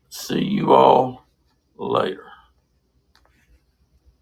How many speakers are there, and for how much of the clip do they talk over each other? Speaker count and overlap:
1, no overlap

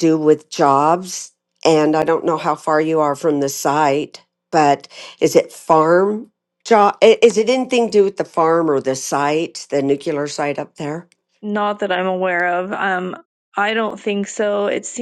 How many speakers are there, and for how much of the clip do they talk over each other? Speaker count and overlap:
2, no overlap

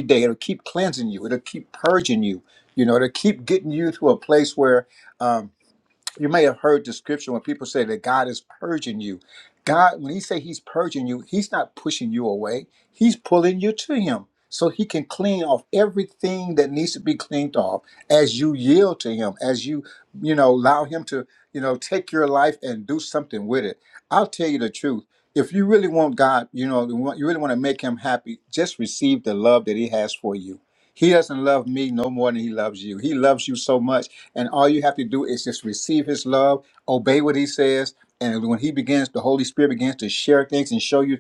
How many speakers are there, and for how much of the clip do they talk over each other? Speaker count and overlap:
1, no overlap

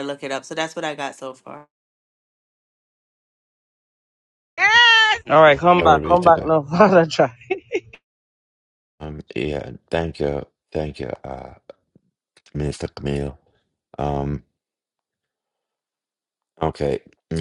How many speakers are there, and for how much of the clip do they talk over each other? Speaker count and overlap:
3, about 4%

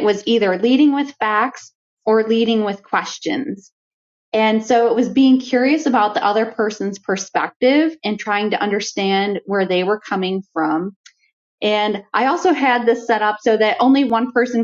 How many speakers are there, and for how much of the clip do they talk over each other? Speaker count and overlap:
1, no overlap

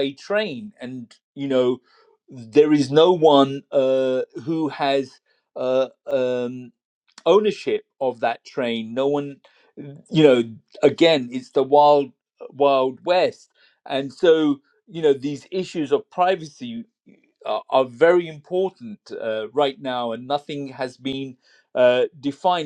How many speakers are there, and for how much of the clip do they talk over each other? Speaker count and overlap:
1, no overlap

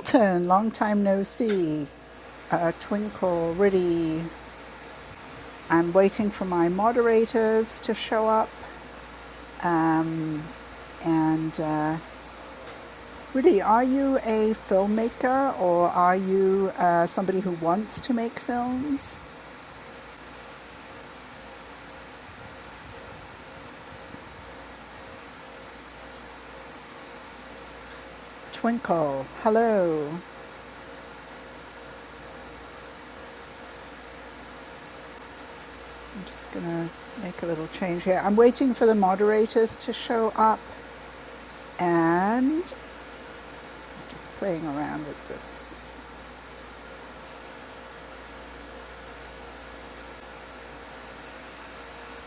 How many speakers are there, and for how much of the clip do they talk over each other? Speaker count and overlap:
1, no overlap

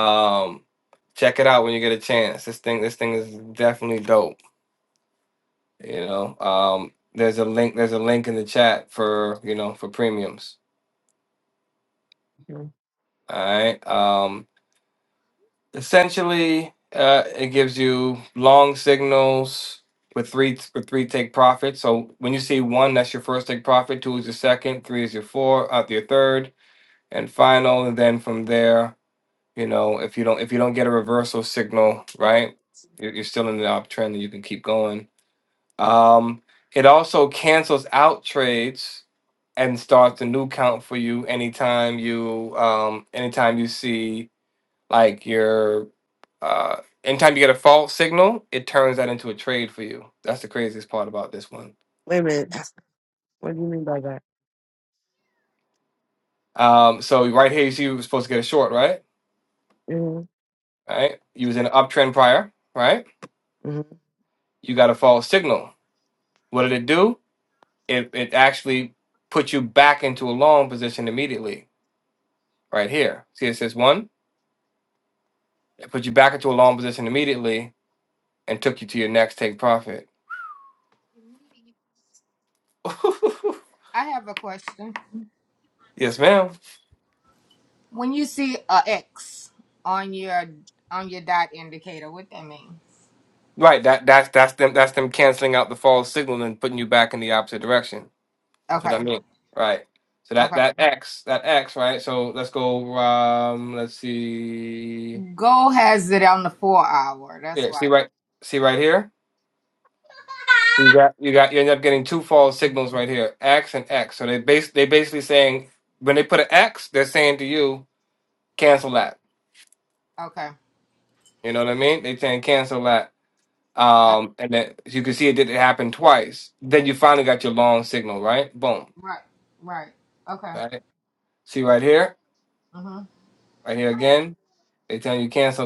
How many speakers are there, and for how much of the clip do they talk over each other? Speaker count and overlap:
3, about 1%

